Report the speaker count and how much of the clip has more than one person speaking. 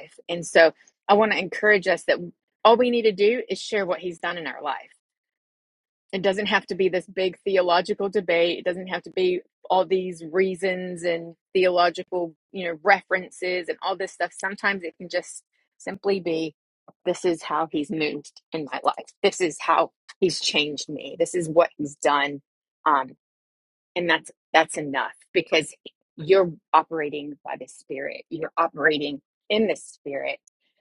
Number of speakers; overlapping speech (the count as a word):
one, no overlap